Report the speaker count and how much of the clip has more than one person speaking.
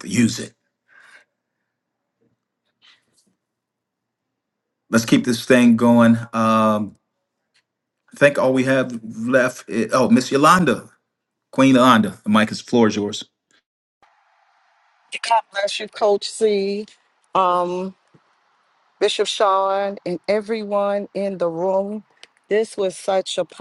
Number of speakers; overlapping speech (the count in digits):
2, no overlap